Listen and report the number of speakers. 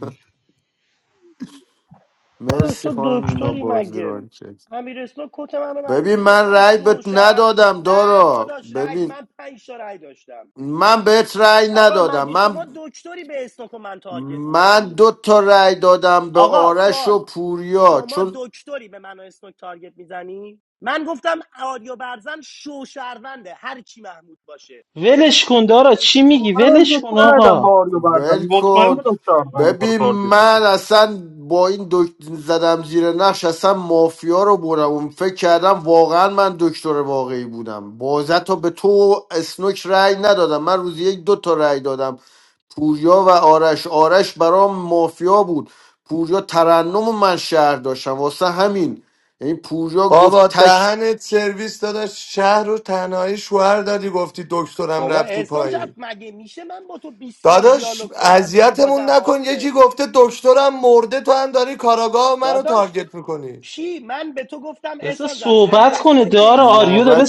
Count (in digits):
5